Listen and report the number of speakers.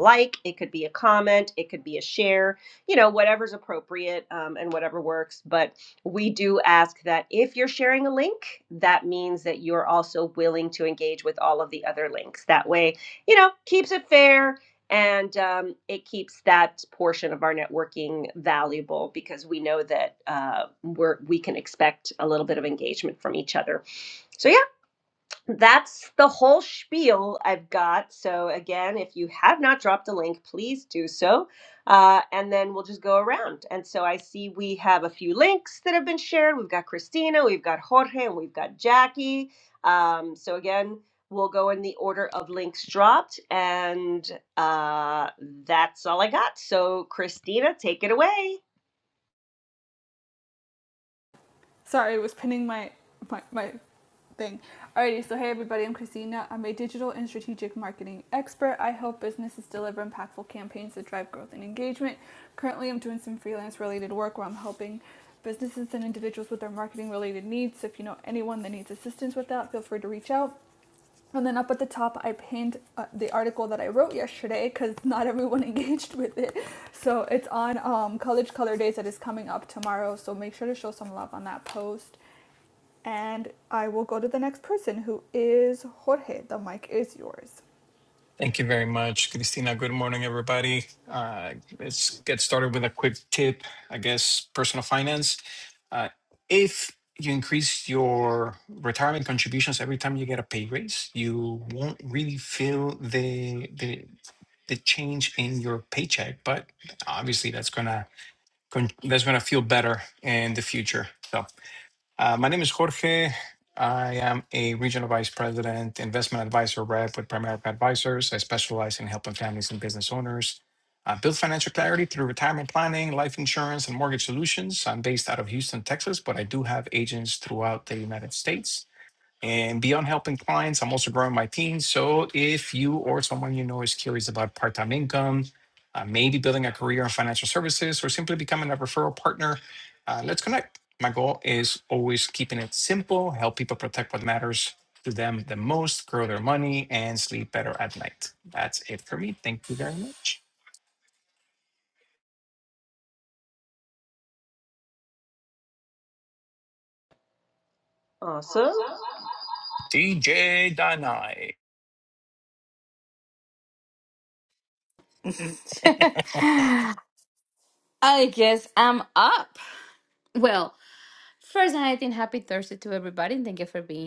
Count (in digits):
4